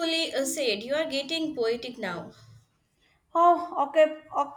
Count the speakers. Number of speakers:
two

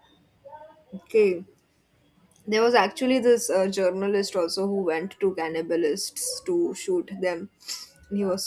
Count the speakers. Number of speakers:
one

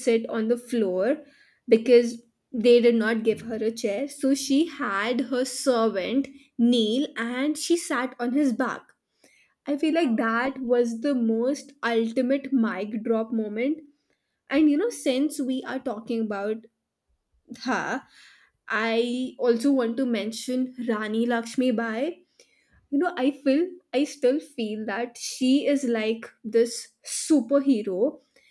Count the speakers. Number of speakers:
one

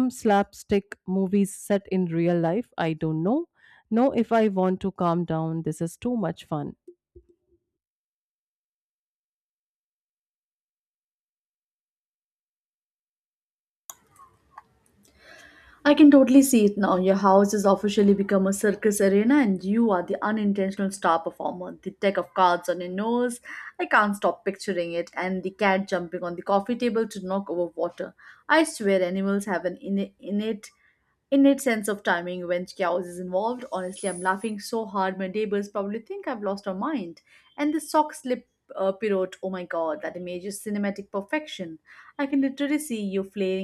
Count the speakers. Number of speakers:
two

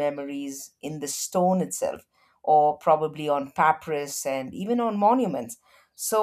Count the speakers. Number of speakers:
one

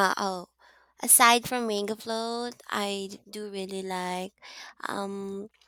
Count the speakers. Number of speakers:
one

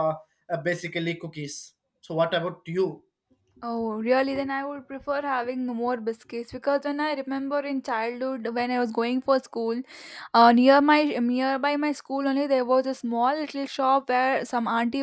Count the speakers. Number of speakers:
two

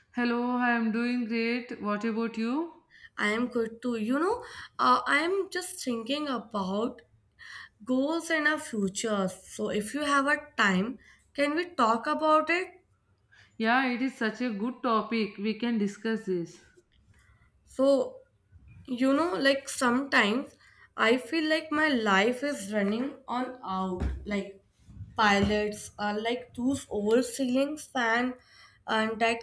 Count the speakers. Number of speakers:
two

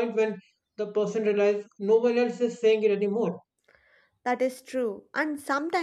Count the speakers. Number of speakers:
two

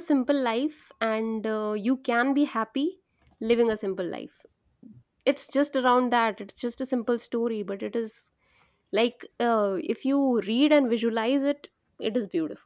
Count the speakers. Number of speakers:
one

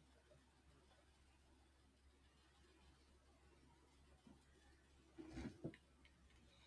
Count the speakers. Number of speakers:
zero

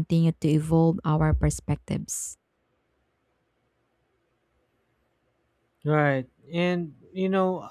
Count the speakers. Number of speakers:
two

